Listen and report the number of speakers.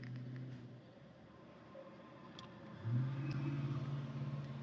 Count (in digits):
0